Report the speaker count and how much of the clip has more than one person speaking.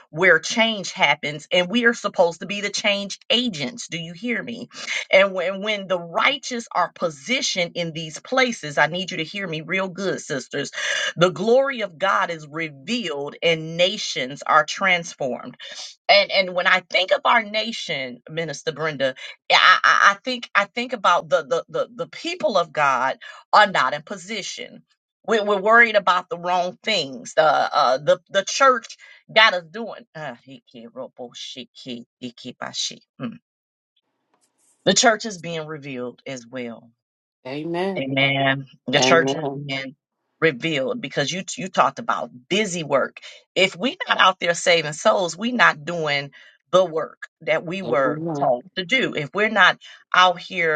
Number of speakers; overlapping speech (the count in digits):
2, about 3%